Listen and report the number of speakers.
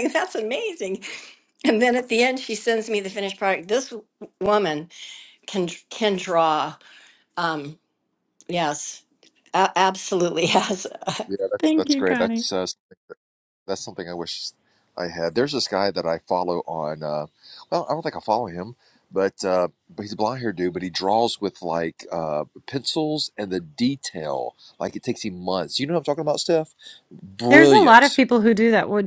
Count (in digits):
3